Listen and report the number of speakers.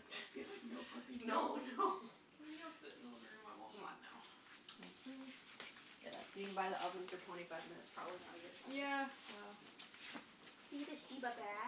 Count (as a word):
two